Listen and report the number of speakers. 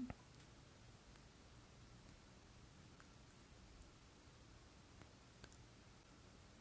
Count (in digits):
0